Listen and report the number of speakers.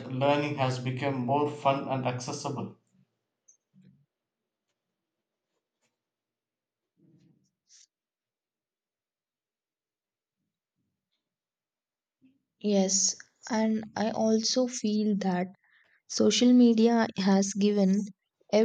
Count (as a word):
two